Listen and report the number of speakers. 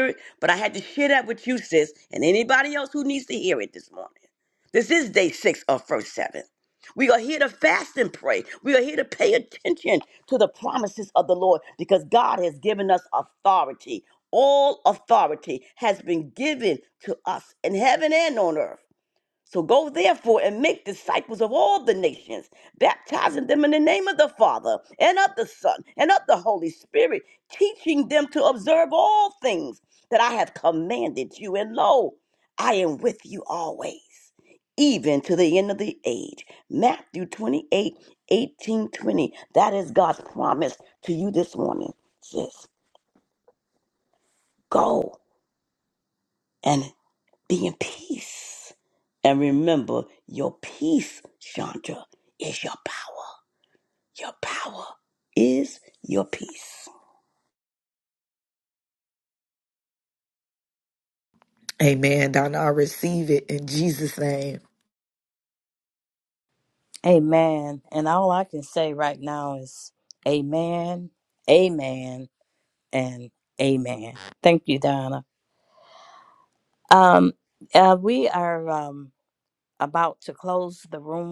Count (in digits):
3